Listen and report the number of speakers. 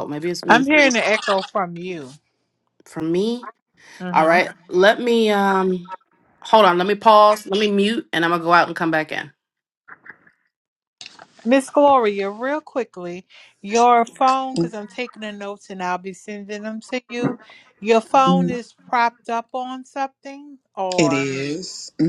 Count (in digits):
3